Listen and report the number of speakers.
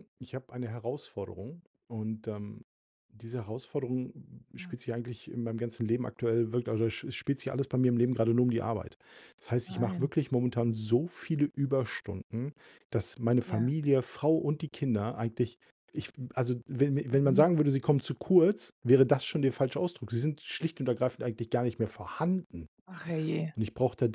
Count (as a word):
two